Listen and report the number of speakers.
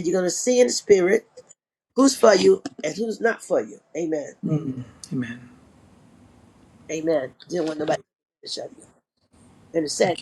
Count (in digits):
2